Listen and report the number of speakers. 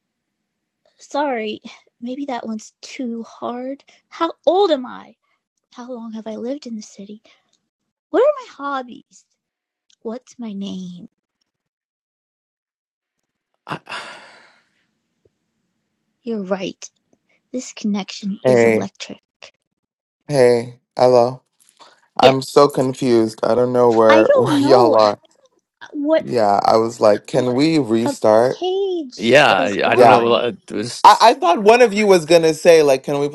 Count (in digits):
3